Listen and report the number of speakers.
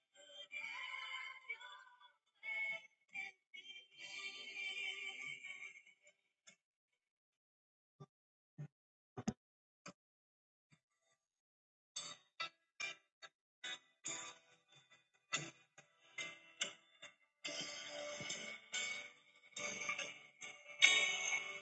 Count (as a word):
zero